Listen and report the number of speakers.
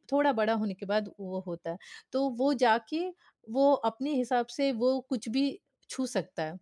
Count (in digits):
1